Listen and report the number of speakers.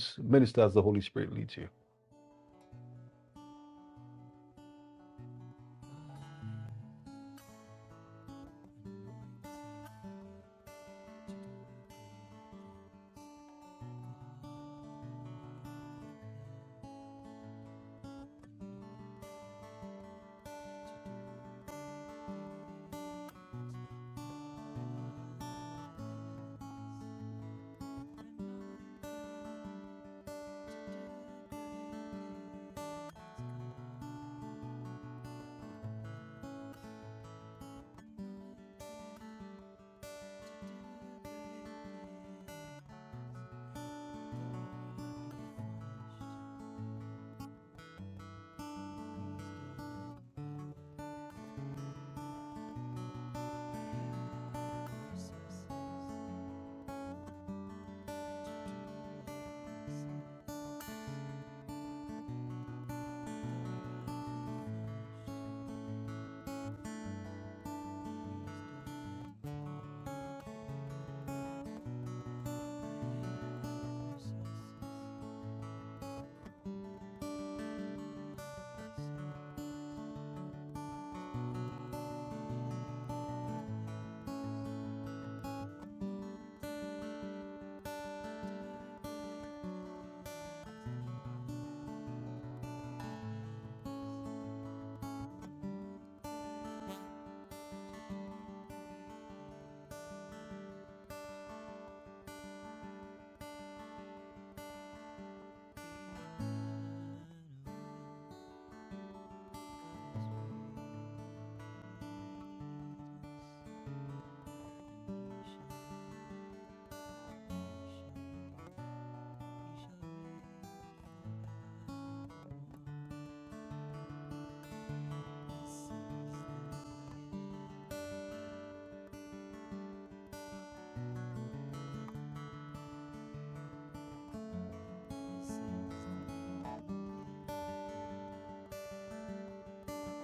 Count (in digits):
2